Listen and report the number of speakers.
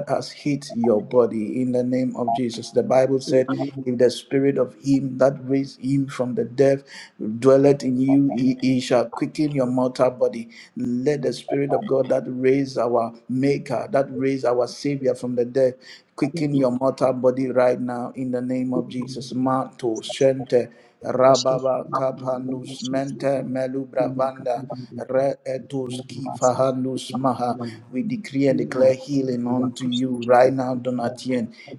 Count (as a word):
two